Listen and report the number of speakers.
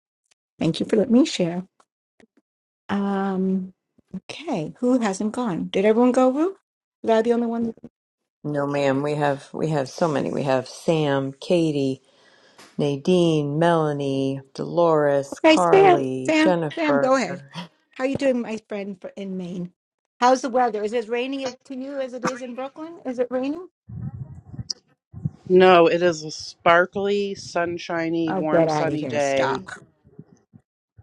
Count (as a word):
three